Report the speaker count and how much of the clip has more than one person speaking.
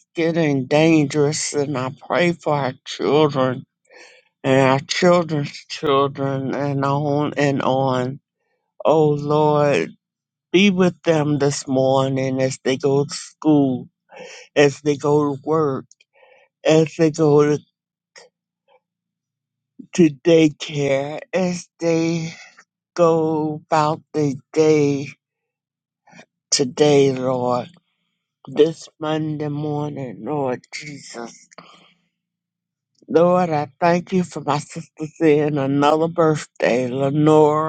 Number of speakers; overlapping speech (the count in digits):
1, no overlap